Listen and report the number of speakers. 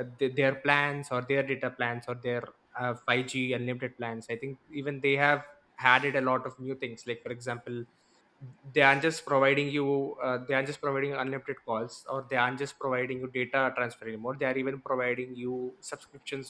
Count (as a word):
one